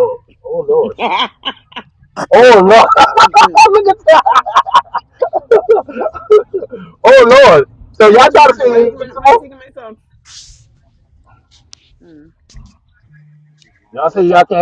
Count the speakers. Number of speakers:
2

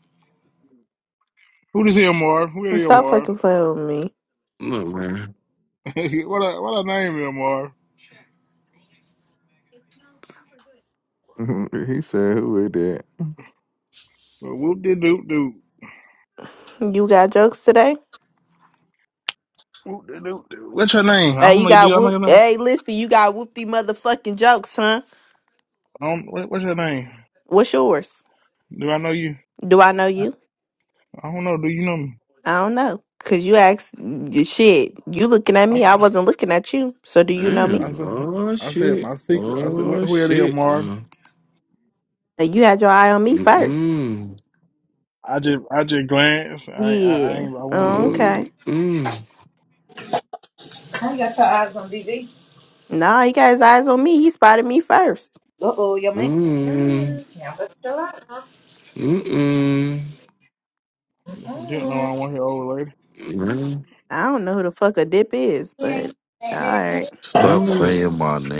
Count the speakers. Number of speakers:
6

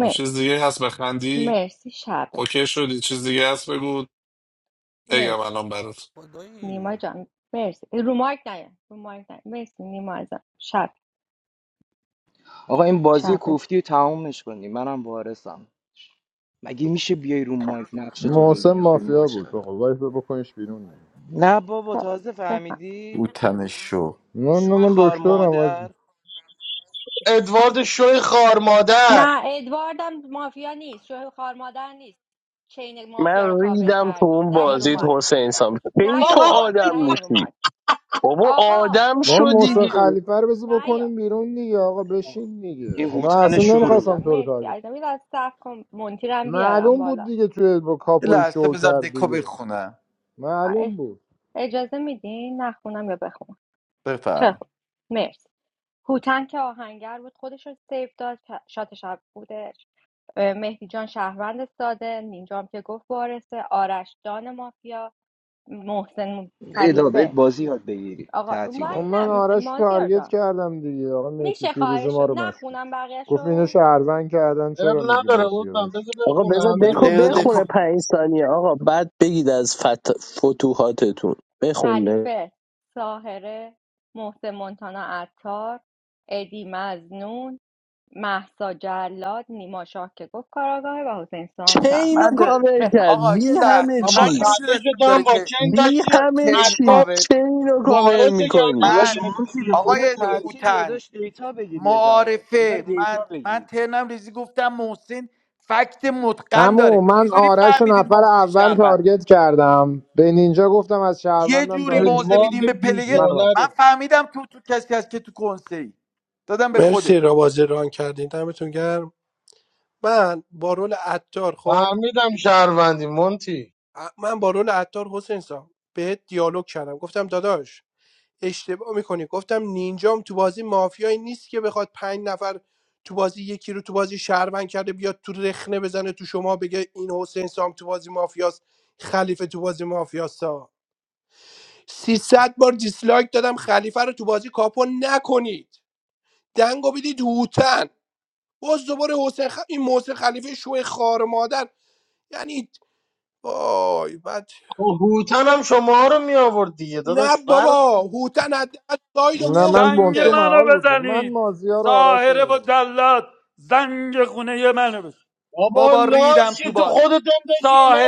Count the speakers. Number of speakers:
8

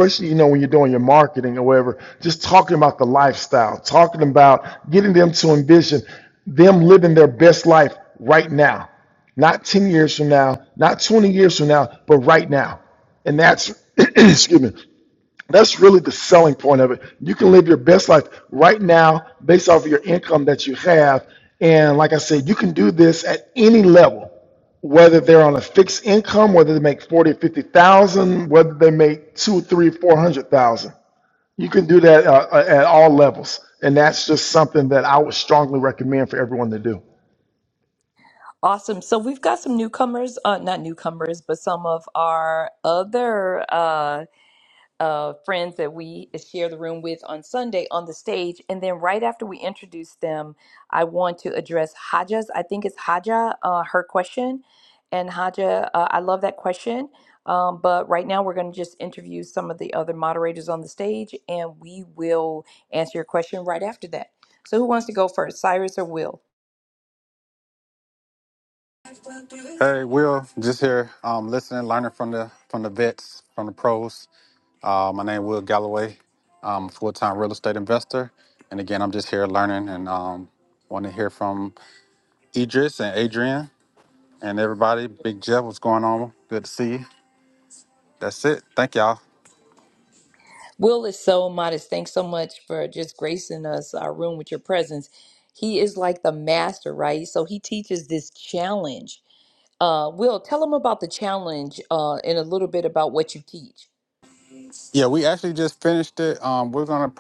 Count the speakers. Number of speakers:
3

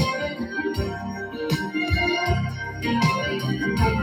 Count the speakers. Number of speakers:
0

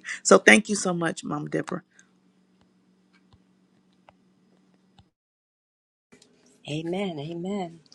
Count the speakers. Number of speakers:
2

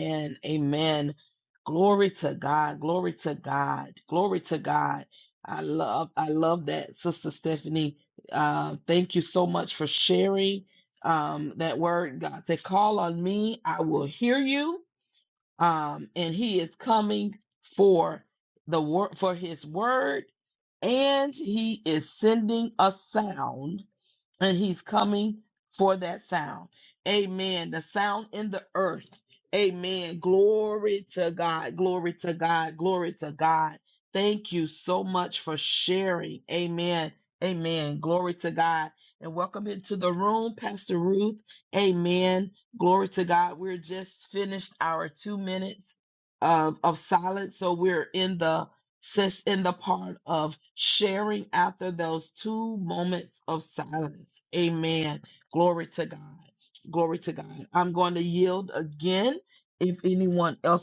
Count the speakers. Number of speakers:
1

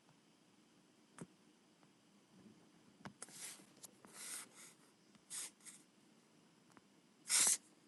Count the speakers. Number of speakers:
0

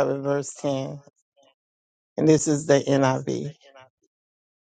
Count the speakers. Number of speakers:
1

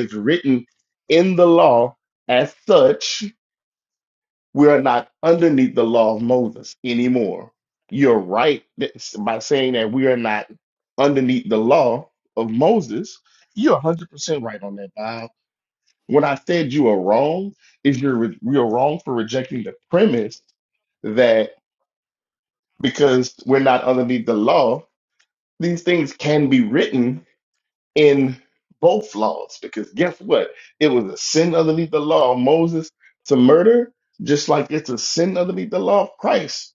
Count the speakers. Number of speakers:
1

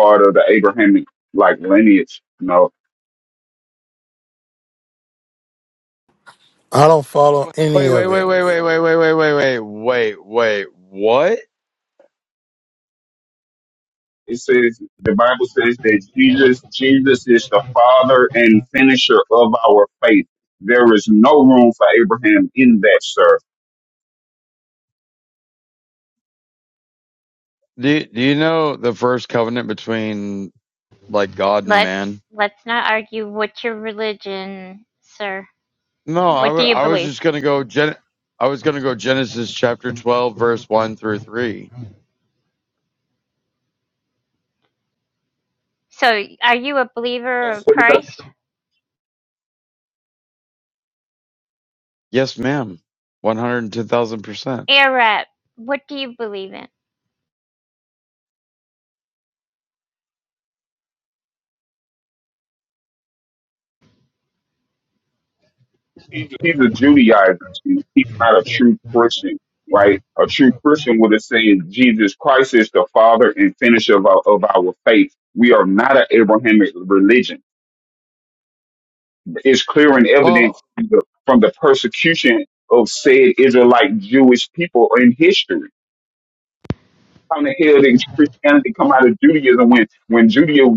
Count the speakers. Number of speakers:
4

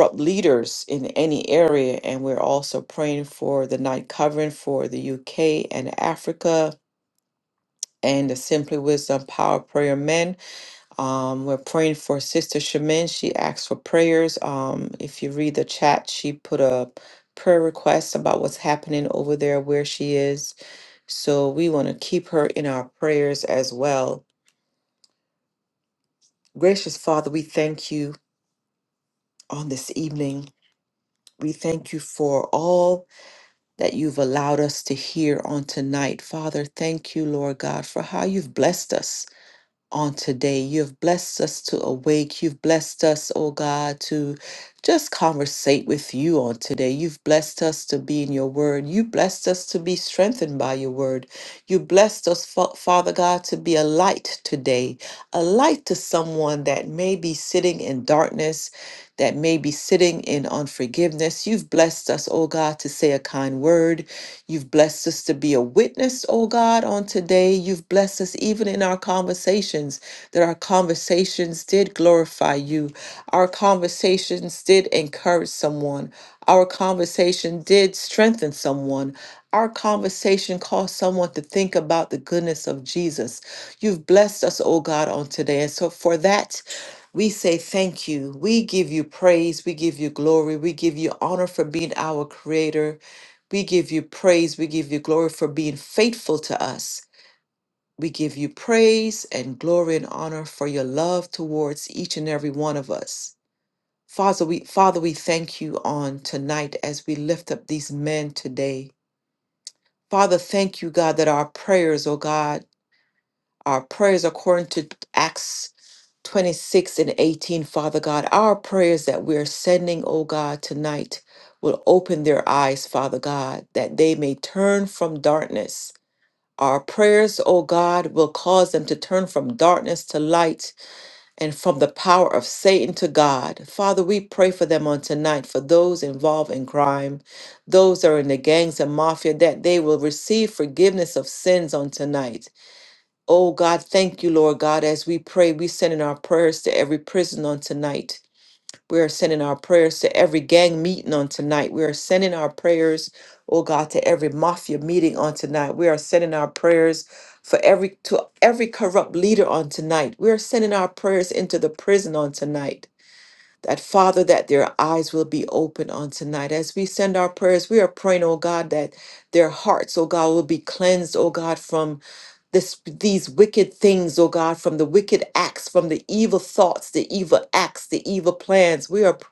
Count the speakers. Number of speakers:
1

